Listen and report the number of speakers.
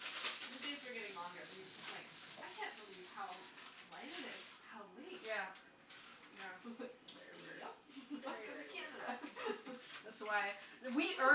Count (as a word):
two